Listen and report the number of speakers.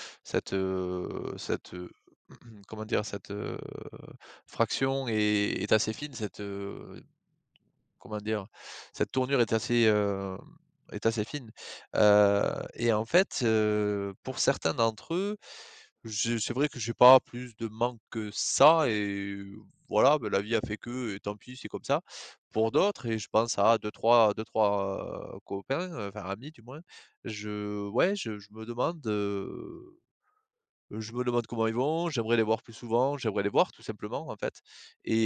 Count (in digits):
1